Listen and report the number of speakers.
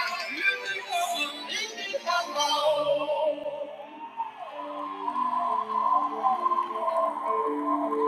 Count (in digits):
0